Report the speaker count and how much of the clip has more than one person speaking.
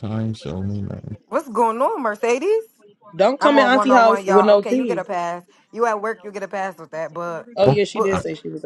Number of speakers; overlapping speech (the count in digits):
3, about 24%